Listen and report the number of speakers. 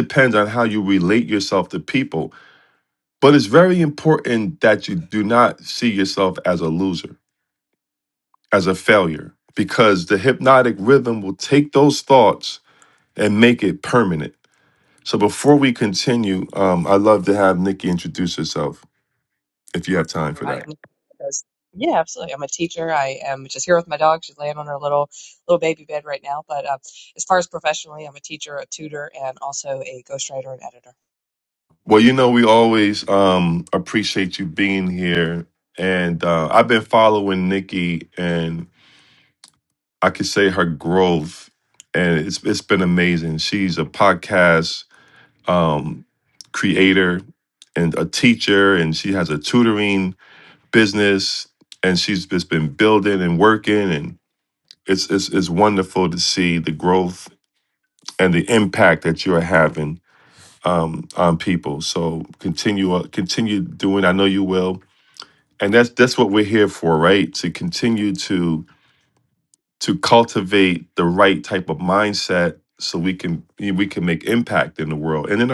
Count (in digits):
2